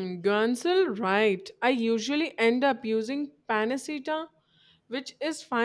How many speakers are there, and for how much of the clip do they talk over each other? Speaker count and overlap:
one, no overlap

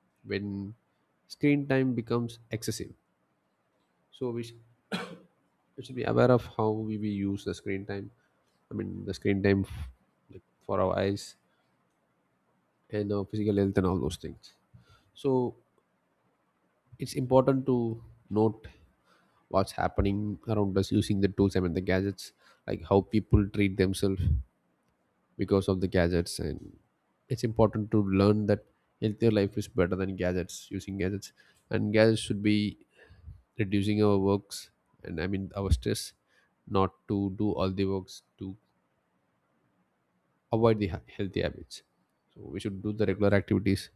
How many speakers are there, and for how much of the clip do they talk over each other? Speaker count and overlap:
one, no overlap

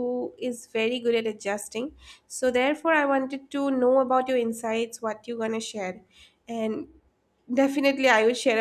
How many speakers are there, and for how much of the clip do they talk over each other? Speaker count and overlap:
one, no overlap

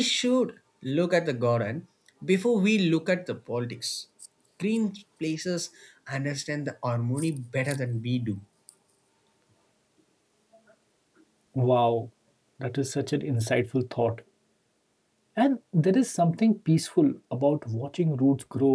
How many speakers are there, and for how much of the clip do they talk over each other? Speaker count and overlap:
two, no overlap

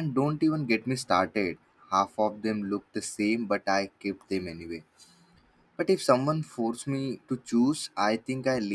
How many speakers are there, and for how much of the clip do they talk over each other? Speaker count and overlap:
one, no overlap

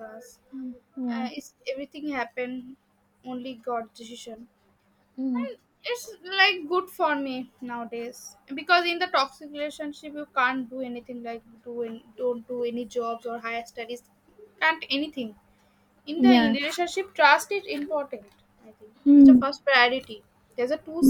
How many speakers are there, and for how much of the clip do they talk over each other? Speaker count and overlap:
two, about 6%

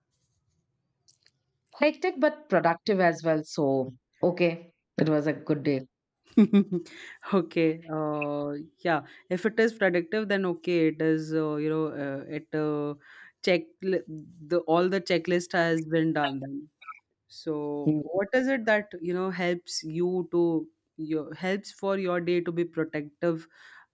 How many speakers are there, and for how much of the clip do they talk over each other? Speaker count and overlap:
two, about 1%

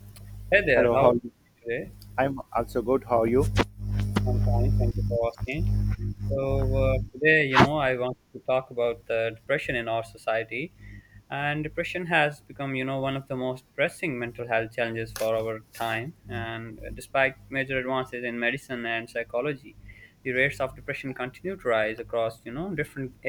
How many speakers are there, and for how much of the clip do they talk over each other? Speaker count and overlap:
two, about 2%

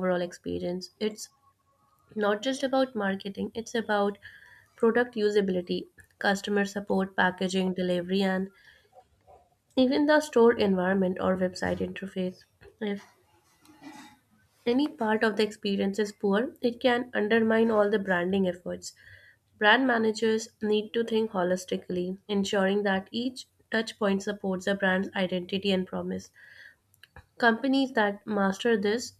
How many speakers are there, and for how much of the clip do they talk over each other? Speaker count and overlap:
one, no overlap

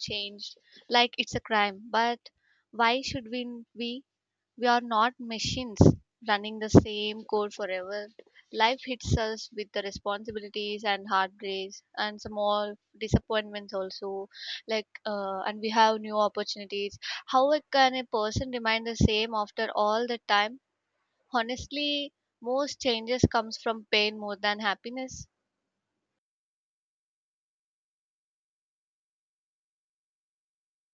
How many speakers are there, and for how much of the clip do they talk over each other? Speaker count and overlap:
one, no overlap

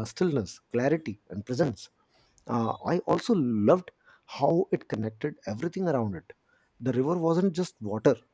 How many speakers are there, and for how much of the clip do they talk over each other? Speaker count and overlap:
one, no overlap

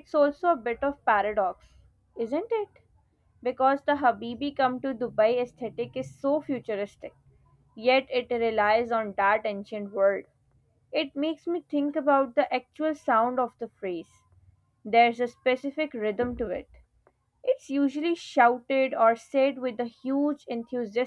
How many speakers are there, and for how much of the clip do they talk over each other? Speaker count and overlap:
one, no overlap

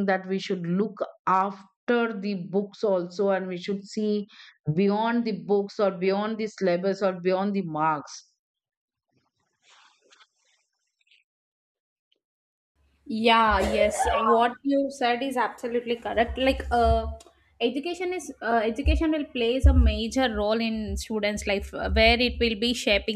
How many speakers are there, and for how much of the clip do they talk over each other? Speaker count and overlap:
two, no overlap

